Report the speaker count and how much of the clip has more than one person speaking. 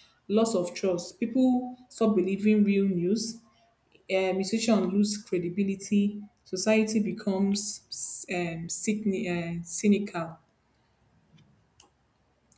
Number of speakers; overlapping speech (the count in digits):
1, no overlap